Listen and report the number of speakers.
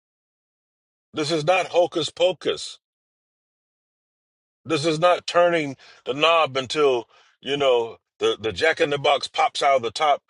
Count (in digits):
1